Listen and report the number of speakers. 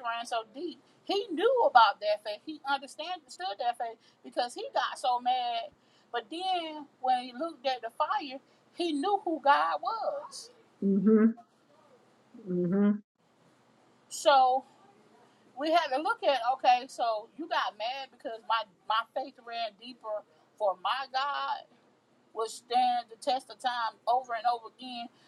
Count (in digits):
2